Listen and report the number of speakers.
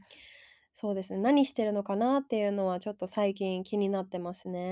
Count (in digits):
1